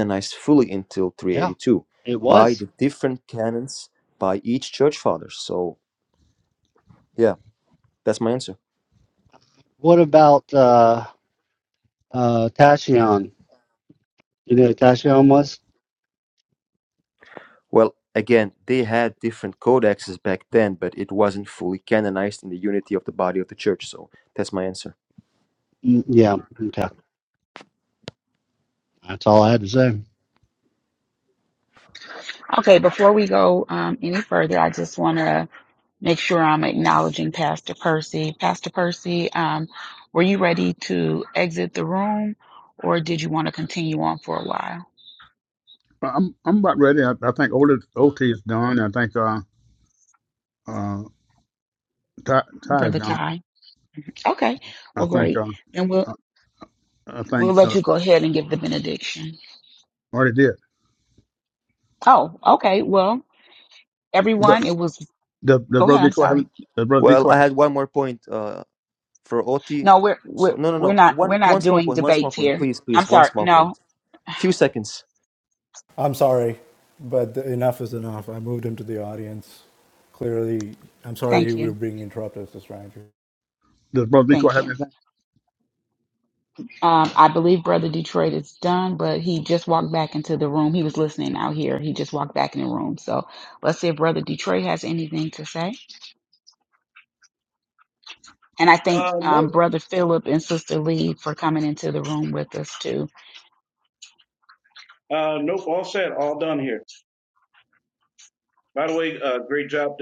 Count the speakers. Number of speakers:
6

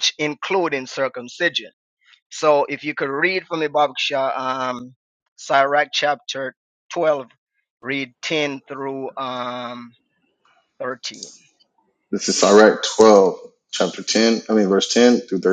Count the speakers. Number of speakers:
2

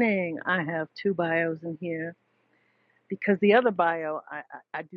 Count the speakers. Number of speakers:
1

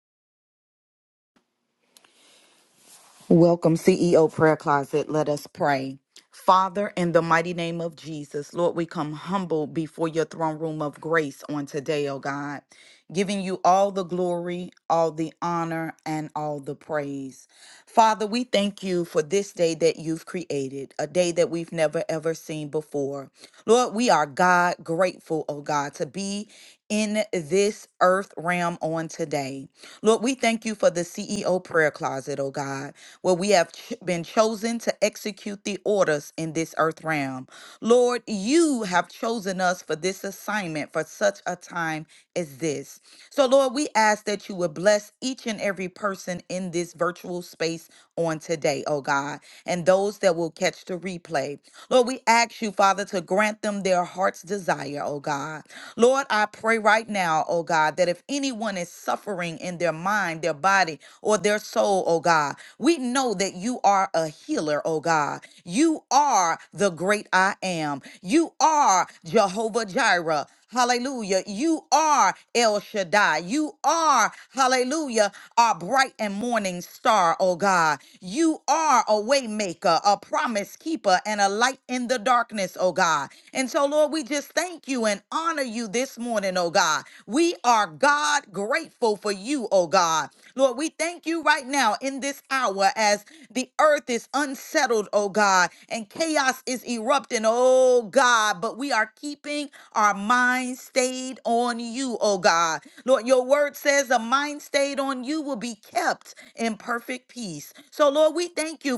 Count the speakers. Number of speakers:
1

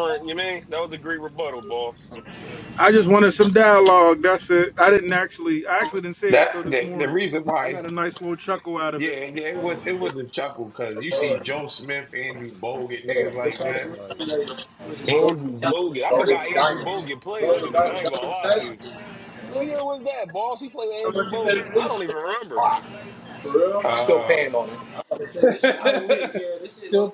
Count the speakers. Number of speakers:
4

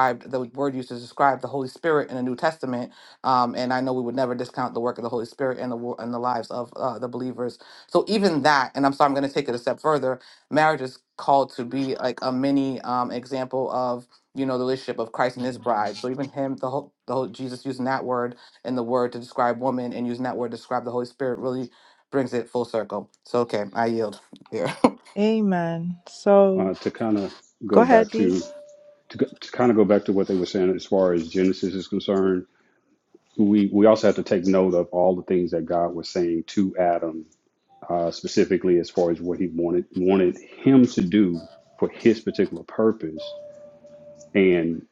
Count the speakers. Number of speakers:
3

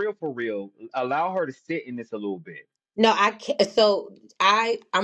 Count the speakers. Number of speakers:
2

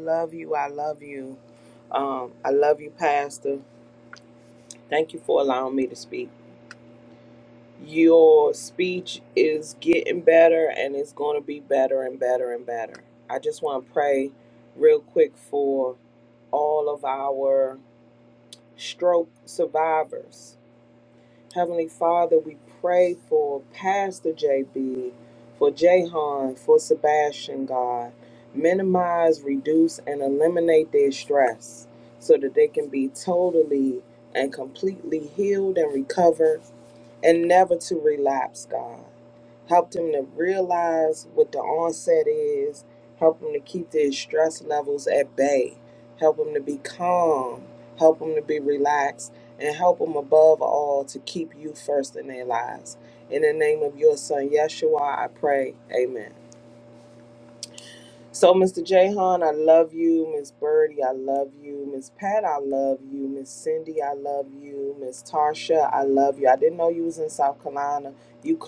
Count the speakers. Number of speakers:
1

